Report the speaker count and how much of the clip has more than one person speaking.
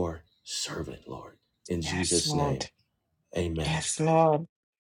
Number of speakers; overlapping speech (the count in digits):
2, about 20%